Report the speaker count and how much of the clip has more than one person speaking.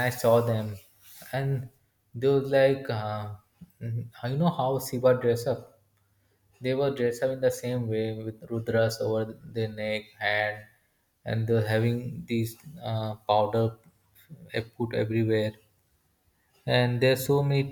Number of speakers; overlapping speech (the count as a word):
one, no overlap